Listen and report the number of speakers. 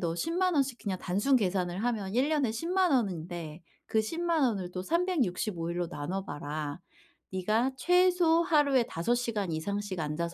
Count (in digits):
1